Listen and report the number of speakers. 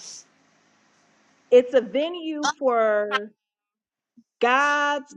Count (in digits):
1